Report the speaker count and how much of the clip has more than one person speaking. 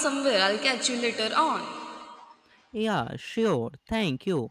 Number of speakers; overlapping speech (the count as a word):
two, no overlap